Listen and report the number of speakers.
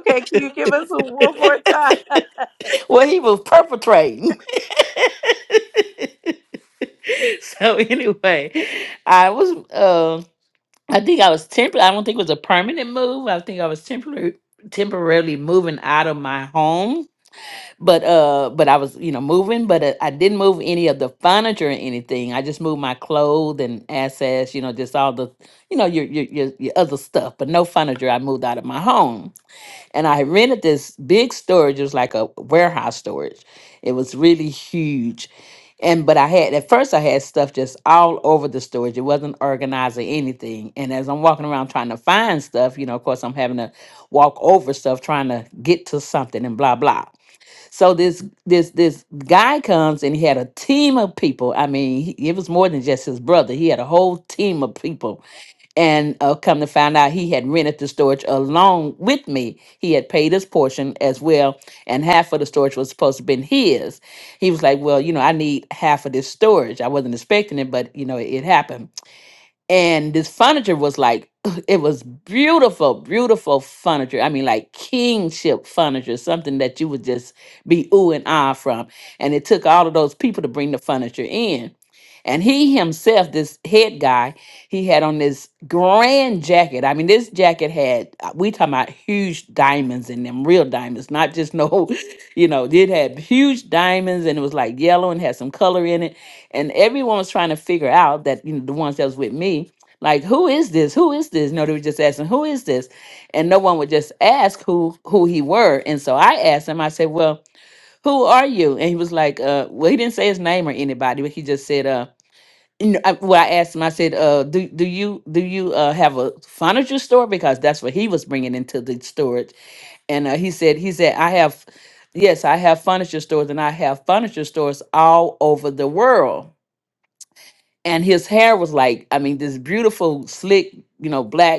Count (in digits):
2